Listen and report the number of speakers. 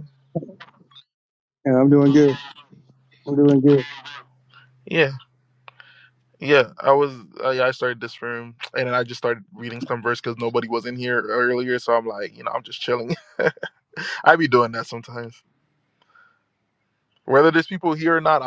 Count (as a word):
two